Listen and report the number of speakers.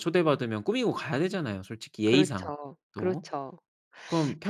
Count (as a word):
two